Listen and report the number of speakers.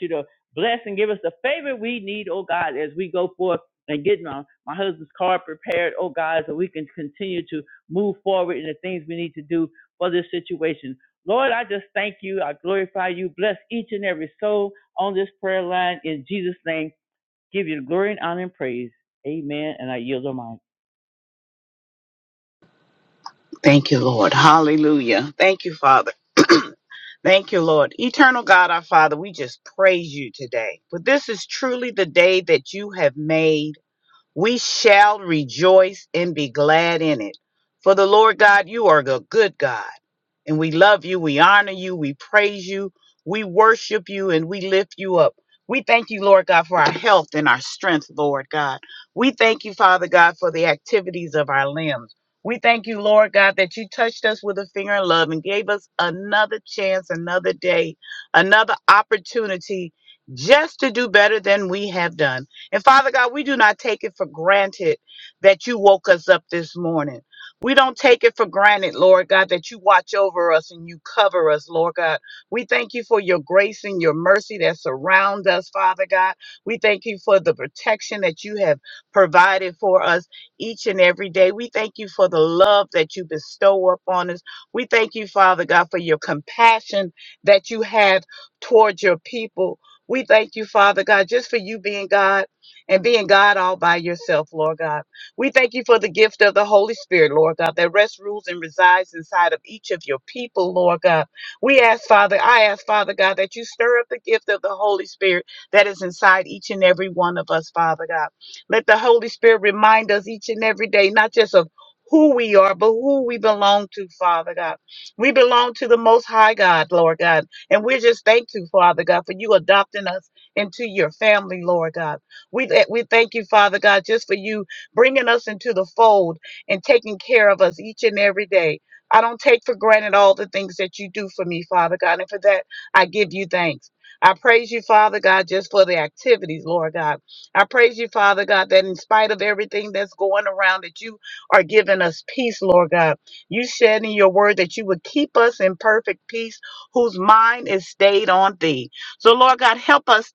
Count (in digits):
2